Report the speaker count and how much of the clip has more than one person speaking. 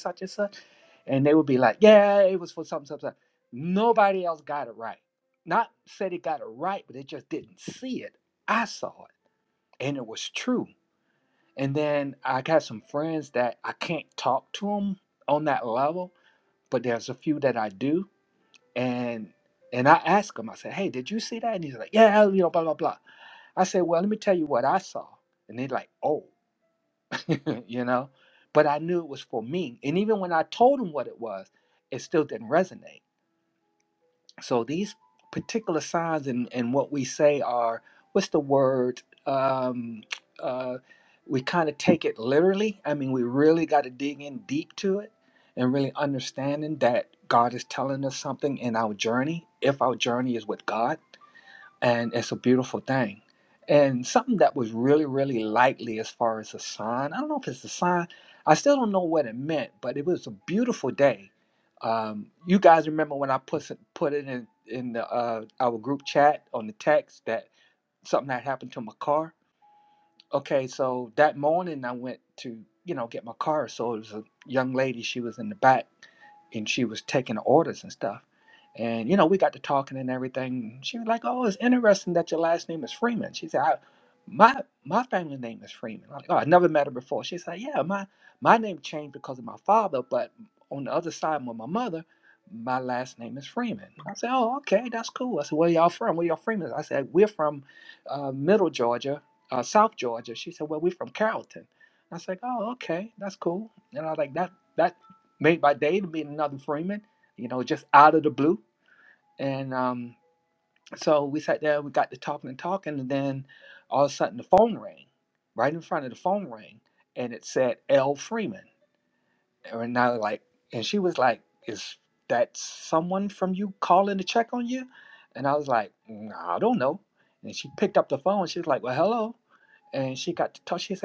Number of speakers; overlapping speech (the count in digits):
1, no overlap